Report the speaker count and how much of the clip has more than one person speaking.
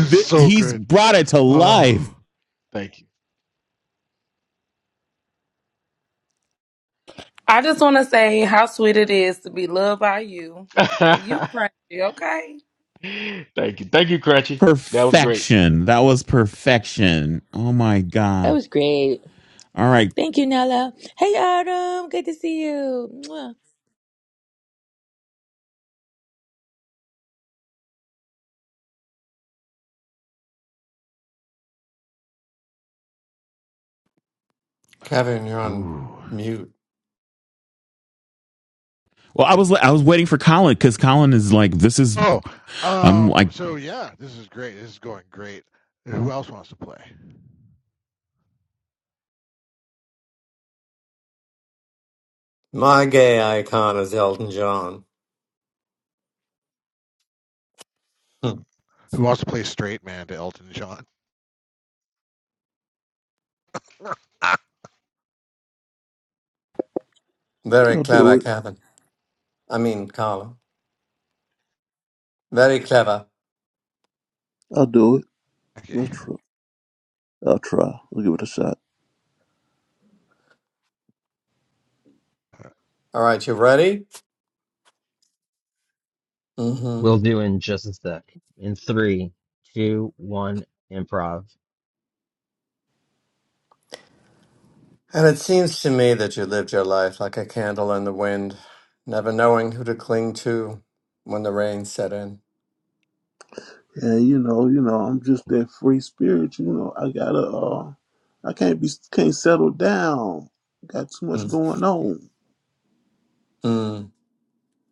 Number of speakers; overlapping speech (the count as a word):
eight, about 3%